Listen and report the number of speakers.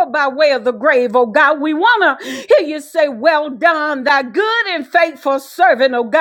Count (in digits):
1